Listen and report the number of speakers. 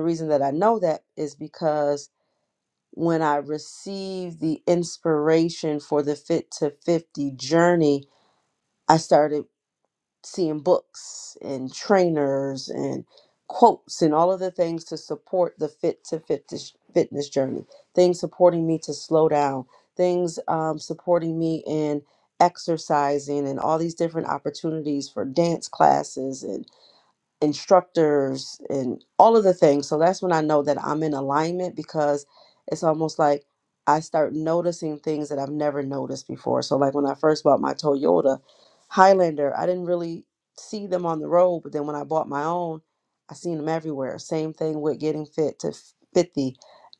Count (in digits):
1